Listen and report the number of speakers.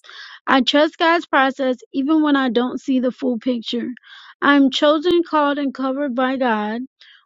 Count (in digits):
1